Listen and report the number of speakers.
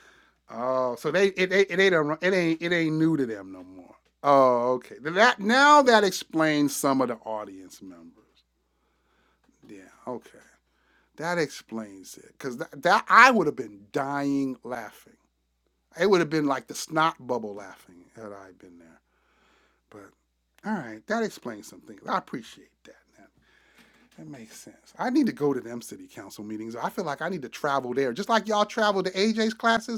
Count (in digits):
1